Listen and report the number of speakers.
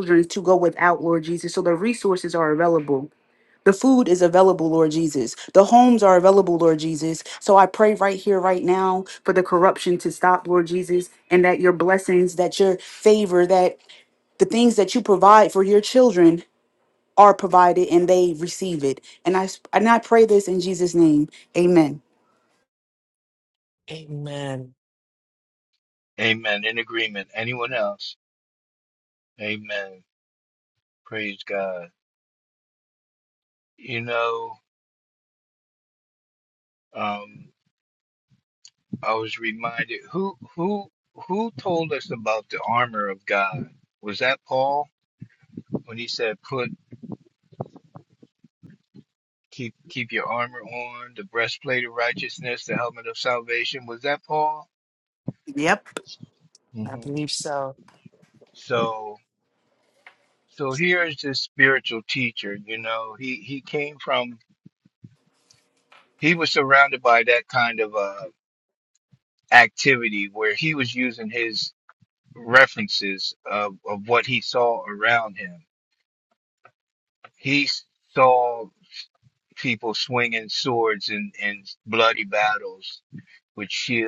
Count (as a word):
three